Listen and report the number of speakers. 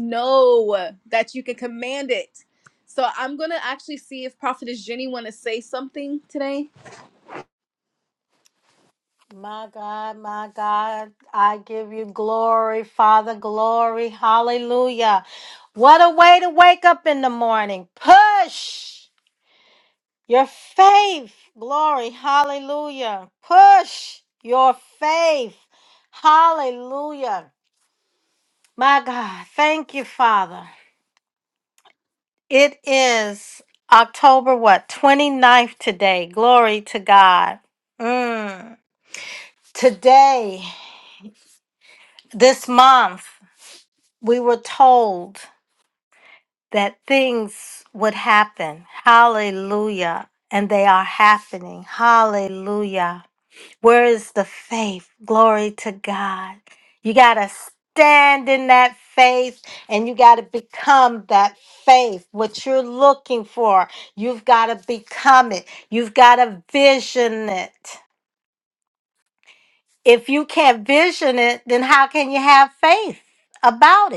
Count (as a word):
two